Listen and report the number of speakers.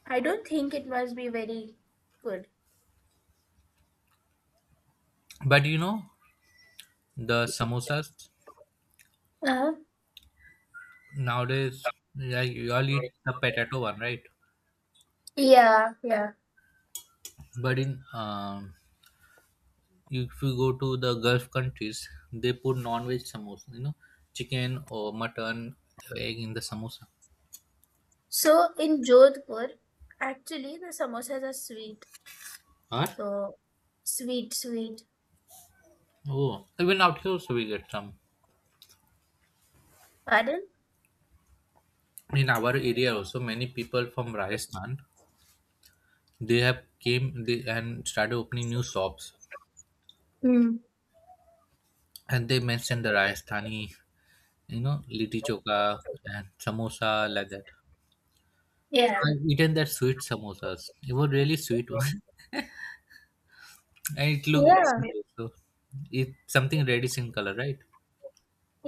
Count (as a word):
two